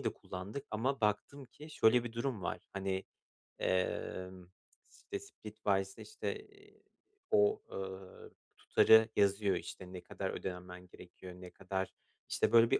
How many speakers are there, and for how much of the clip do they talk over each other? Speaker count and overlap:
1, no overlap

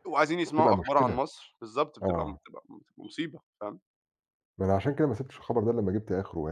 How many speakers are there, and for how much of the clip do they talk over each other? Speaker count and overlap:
2, about 14%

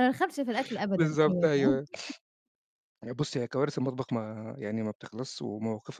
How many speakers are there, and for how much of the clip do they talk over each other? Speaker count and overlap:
2, about 14%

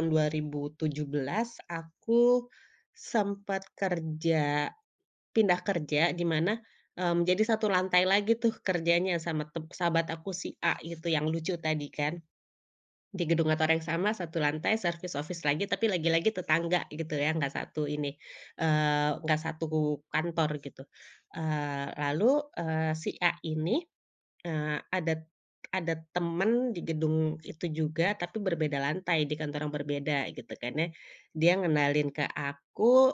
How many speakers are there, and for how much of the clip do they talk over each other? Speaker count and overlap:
1, no overlap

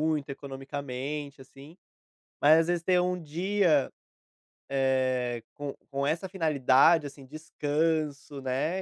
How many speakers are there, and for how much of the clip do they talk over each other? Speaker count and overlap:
1, no overlap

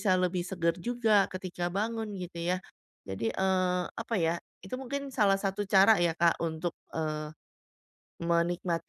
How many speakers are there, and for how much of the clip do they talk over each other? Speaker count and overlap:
1, no overlap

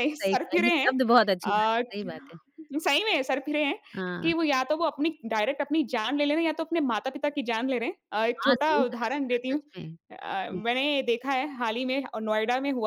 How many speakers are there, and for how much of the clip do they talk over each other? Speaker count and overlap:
2, about 21%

